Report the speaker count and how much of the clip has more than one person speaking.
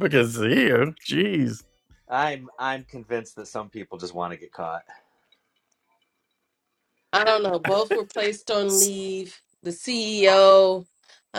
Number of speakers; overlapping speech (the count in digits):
3, no overlap